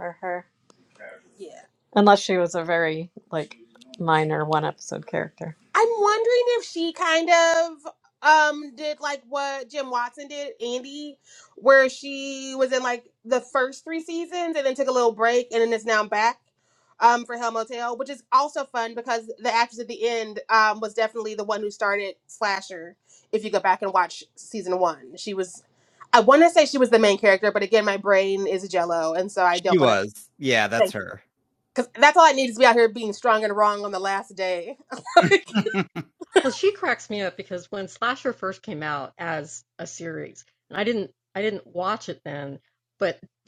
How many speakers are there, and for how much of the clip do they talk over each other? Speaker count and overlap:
four, about 1%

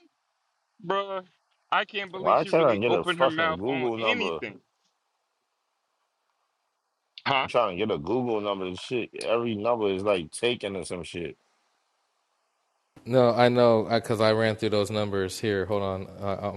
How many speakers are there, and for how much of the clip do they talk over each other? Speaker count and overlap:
three, about 14%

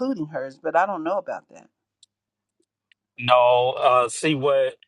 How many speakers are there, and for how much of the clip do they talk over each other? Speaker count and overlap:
two, no overlap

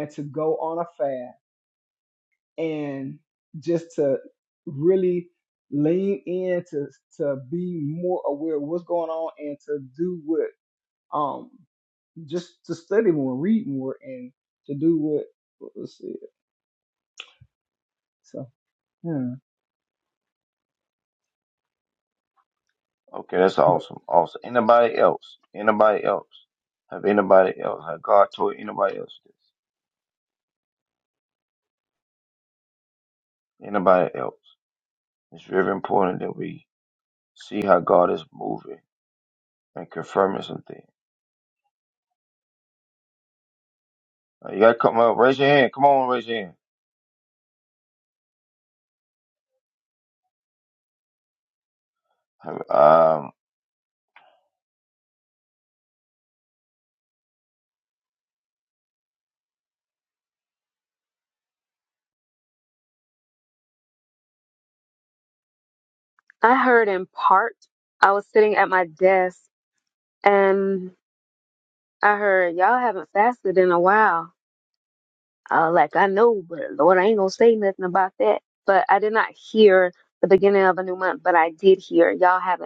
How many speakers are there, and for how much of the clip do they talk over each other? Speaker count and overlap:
three, under 1%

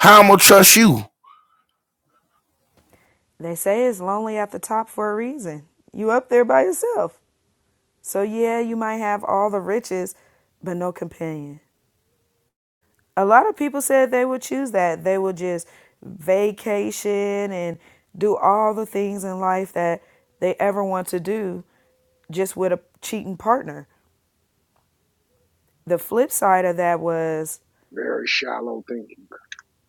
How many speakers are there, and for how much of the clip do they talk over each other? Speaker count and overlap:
three, no overlap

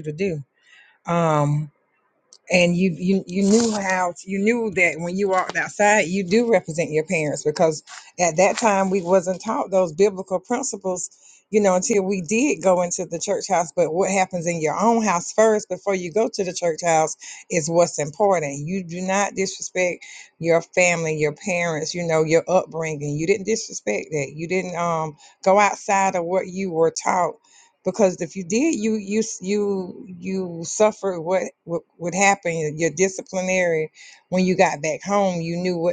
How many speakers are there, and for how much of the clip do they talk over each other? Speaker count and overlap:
one, no overlap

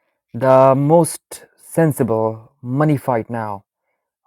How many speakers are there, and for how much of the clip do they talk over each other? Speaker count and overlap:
one, no overlap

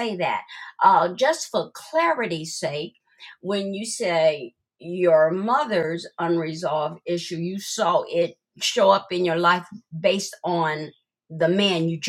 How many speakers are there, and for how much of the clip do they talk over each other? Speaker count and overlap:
one, no overlap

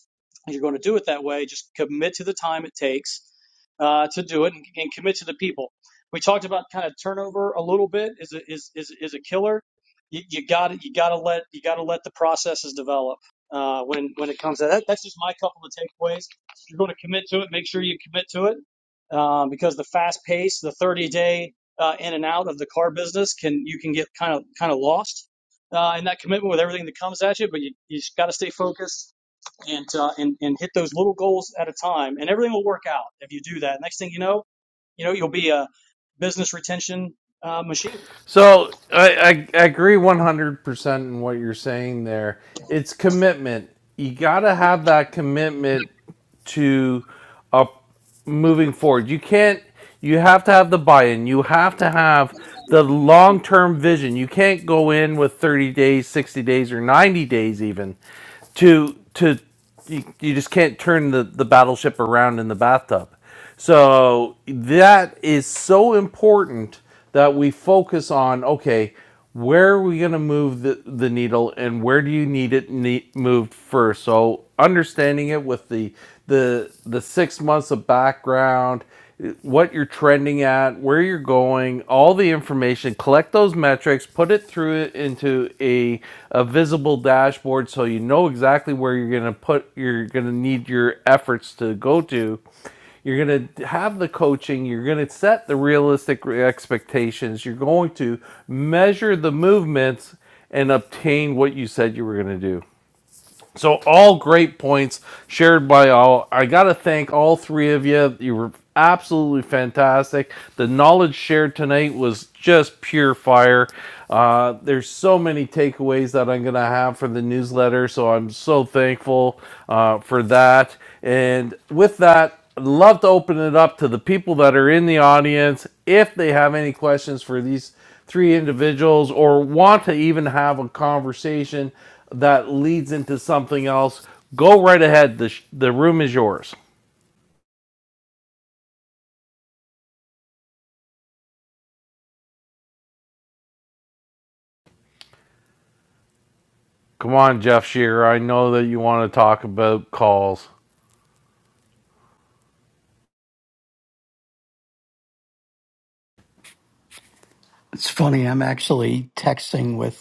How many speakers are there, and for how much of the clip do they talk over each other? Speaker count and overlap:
three, no overlap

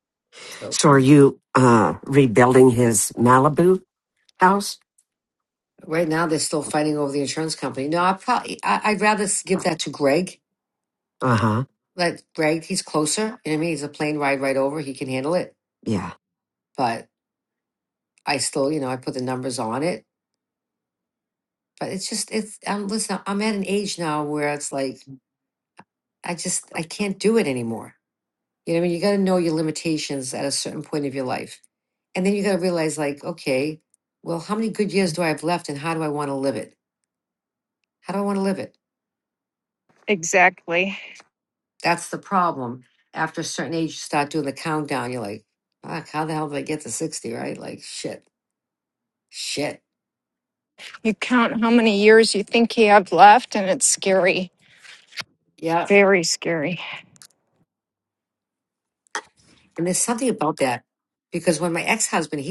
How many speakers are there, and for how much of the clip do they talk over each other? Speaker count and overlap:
three, under 1%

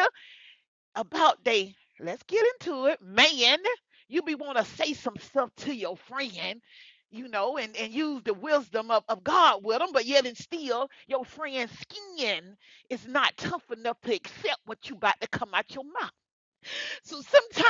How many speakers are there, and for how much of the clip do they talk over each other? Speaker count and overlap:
one, no overlap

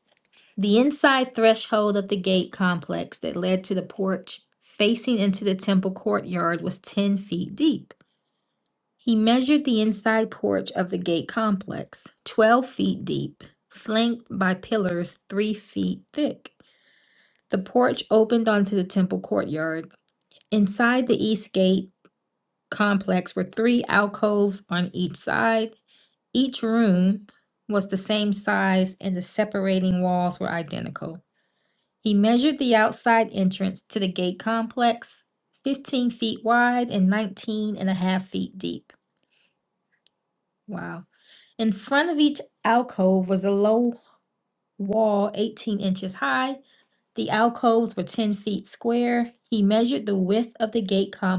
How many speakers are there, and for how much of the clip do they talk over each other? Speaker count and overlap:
one, no overlap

